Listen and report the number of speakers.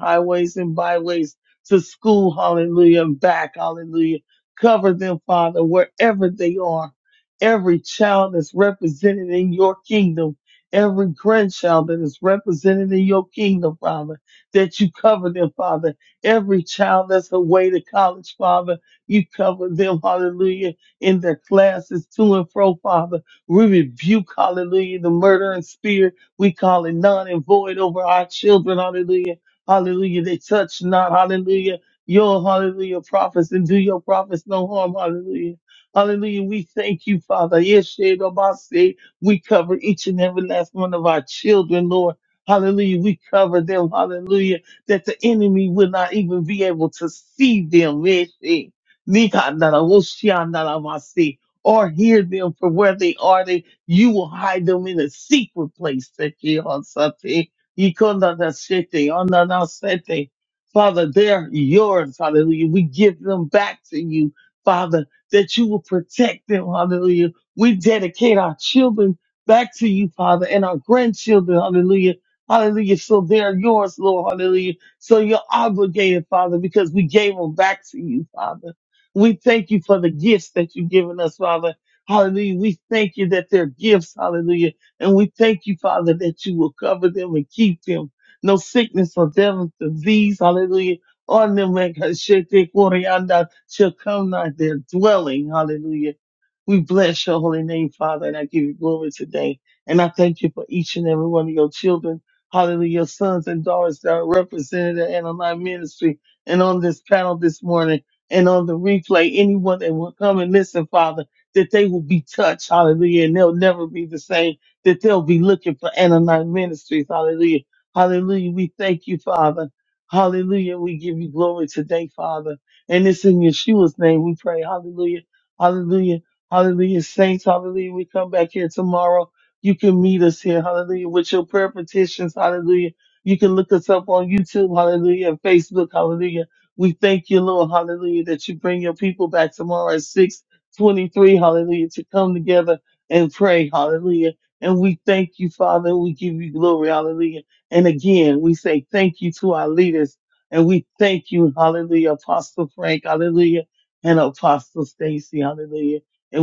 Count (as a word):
one